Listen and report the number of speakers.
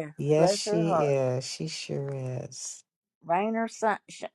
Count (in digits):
2